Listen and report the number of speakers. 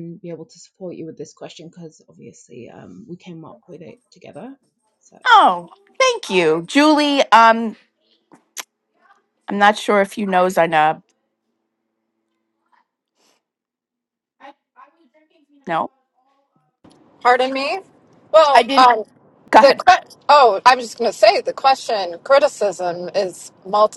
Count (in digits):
3